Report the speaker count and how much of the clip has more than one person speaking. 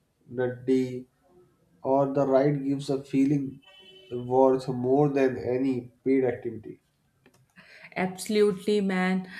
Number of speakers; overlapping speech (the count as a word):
two, no overlap